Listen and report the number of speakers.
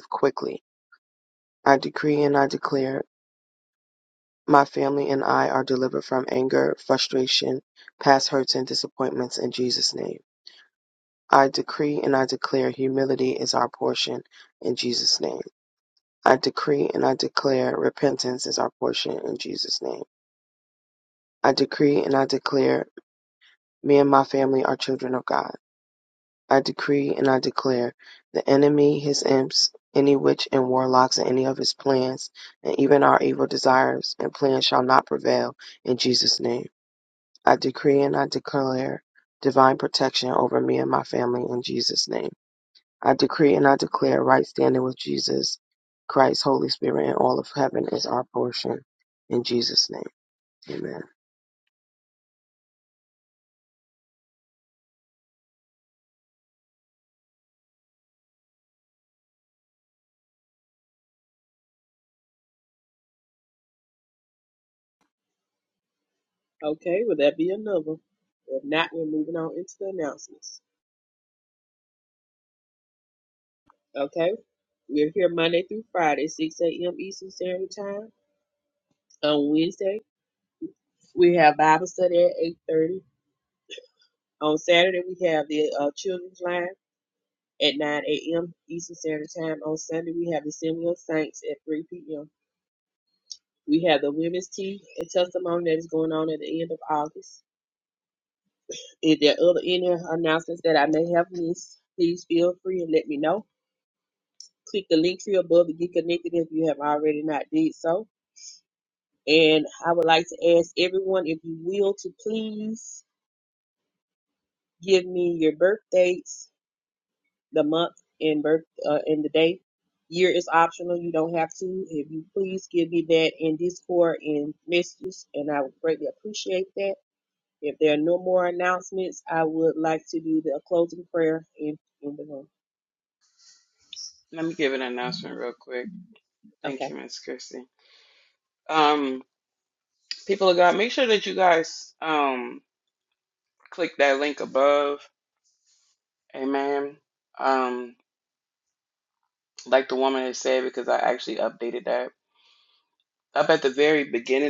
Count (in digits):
3